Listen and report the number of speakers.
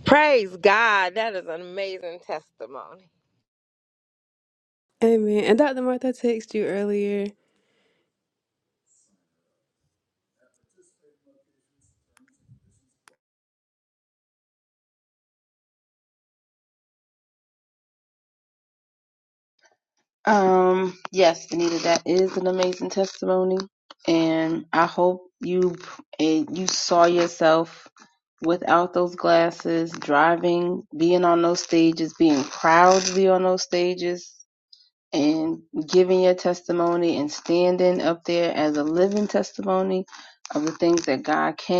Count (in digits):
3